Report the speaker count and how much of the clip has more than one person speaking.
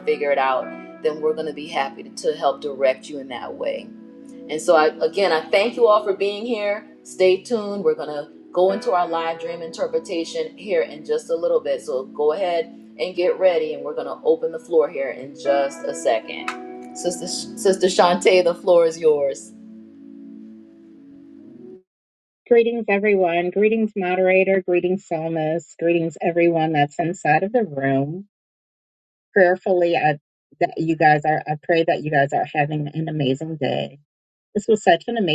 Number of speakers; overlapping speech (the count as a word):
two, no overlap